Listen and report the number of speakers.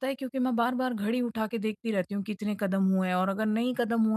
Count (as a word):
one